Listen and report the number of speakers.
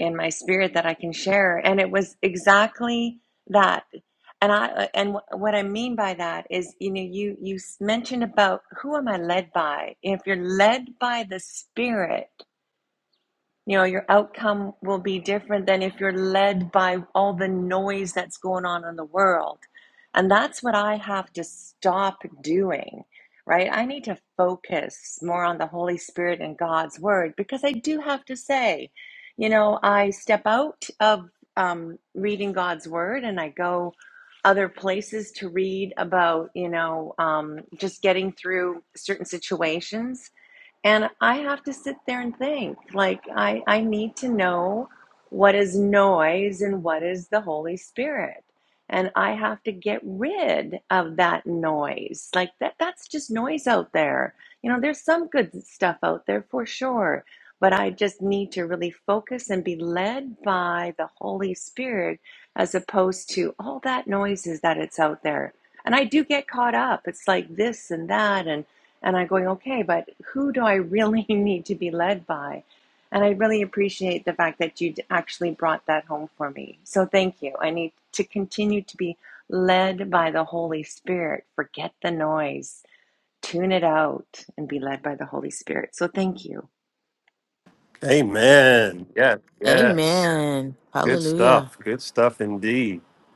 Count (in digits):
3